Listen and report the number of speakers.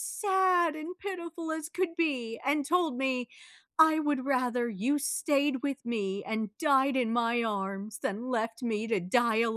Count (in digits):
1